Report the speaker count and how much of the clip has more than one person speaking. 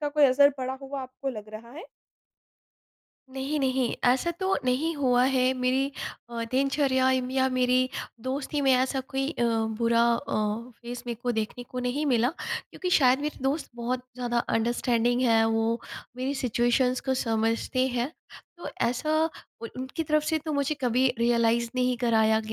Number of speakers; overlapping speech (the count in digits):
2, no overlap